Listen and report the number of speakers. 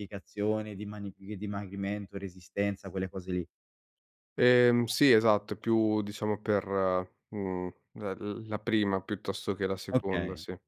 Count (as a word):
two